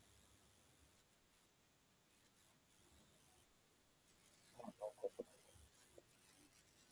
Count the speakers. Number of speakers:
zero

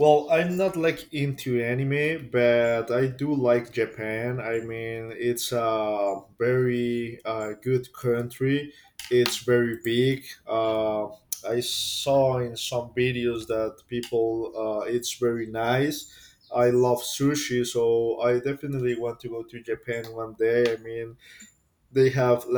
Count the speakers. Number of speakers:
one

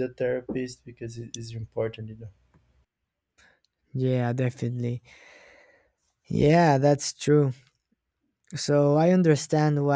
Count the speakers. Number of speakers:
two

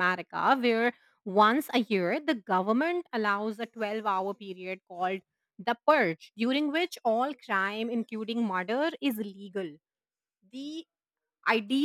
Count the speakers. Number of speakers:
one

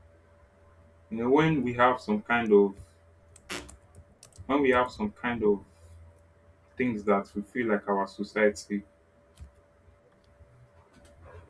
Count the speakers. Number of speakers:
one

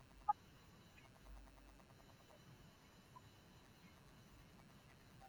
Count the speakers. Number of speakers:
zero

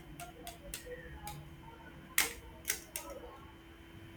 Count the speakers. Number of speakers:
zero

